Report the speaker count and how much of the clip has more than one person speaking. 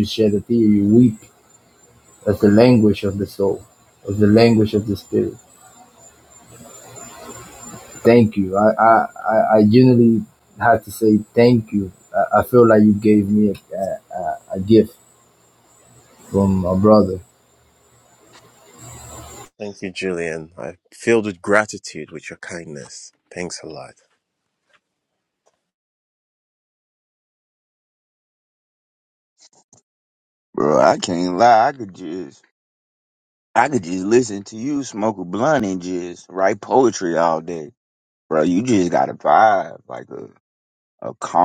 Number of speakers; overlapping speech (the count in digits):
3, no overlap